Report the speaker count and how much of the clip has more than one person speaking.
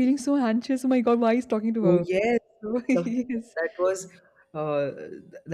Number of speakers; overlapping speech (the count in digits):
2, about 8%